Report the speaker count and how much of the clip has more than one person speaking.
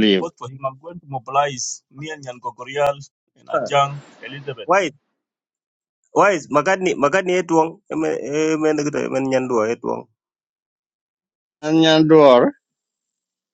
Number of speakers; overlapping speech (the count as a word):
three, about 2%